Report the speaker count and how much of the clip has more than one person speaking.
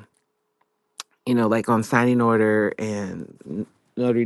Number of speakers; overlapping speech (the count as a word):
one, no overlap